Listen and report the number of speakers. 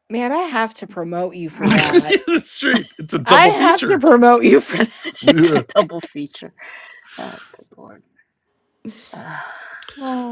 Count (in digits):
3